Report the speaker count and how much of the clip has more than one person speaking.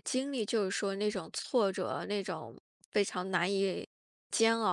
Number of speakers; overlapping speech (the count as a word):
one, no overlap